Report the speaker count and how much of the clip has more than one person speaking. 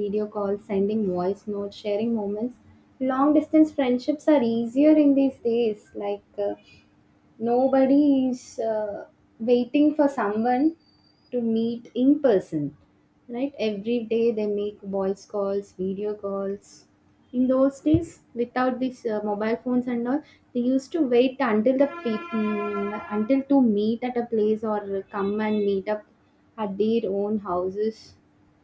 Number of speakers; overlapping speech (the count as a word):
one, no overlap